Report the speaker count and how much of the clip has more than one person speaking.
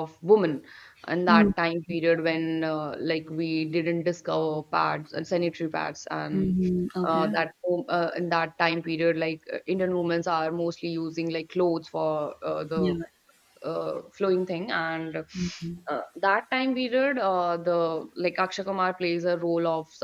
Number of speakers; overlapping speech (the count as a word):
two, about 5%